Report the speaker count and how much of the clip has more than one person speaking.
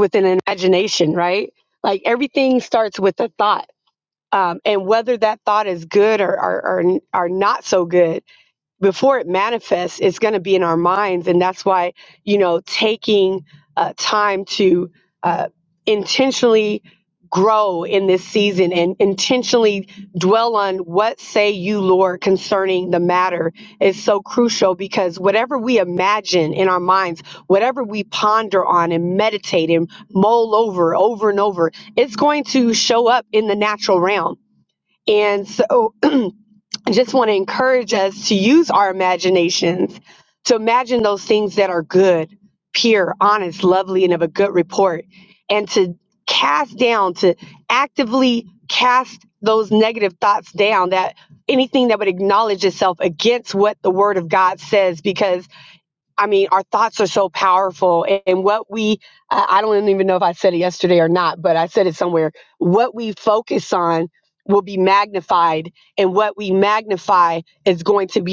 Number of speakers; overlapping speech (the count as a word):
one, no overlap